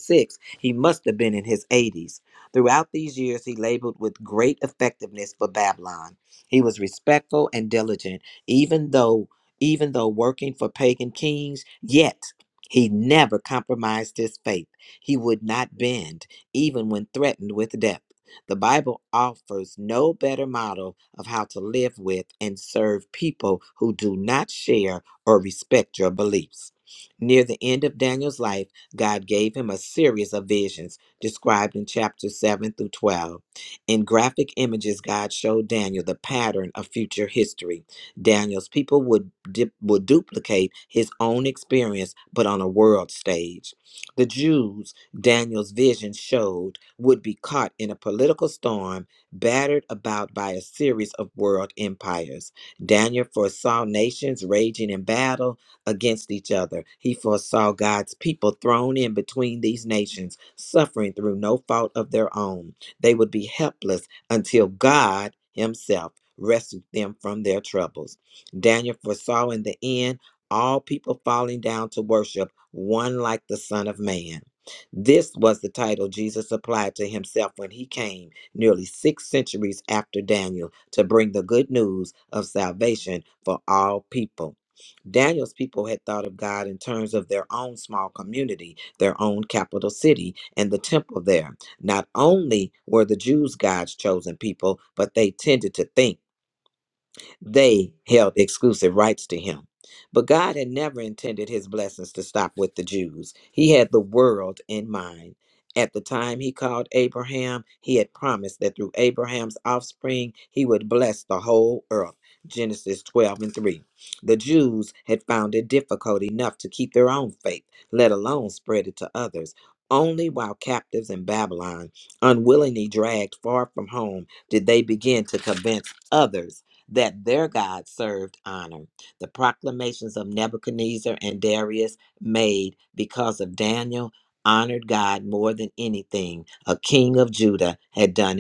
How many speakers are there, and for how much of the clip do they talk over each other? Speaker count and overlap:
one, no overlap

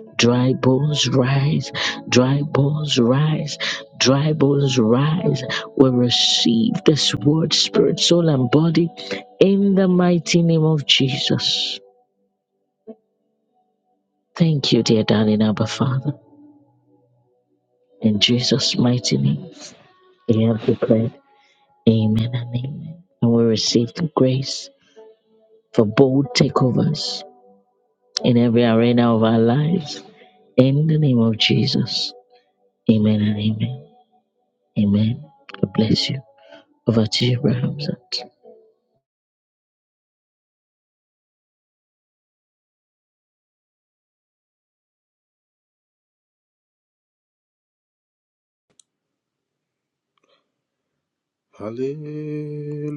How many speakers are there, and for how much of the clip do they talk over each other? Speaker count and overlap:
two, no overlap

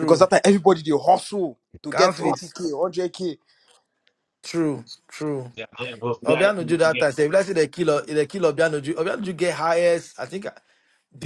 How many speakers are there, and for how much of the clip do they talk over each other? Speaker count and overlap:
three, about 13%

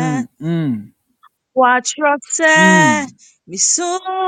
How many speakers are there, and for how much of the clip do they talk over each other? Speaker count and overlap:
two, about 12%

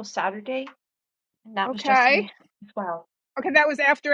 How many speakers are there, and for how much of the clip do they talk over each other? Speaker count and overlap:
two, about 15%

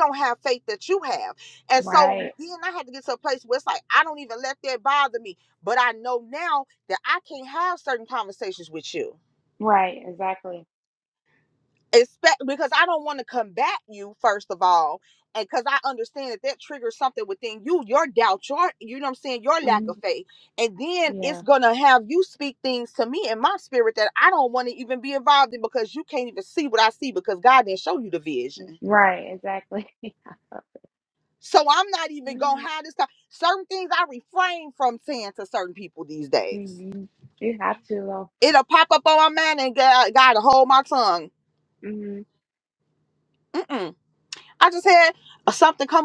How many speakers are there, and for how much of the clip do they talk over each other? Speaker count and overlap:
two, about 4%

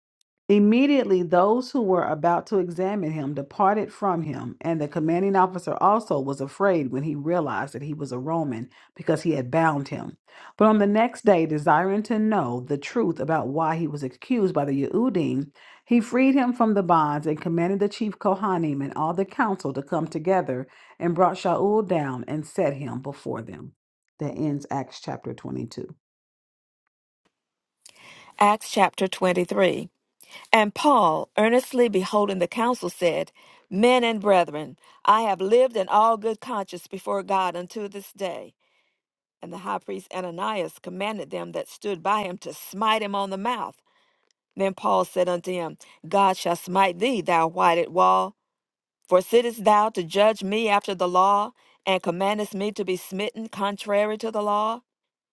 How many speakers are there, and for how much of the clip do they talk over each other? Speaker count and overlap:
two, no overlap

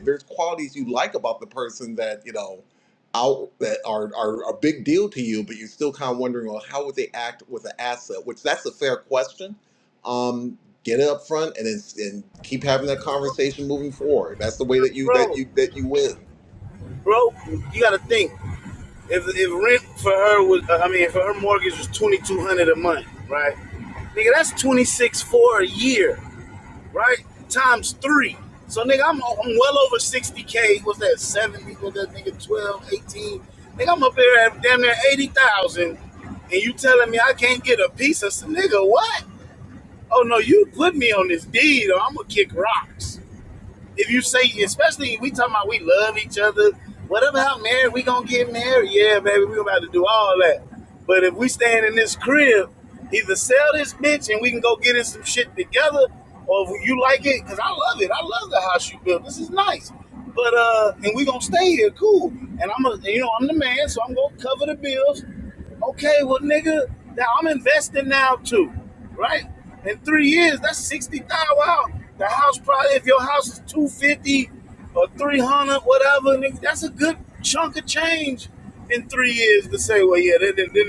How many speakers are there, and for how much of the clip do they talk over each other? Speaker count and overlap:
two, about 1%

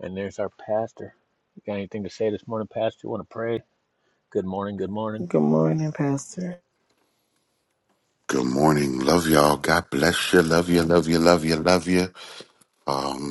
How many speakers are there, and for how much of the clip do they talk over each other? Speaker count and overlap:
three, under 1%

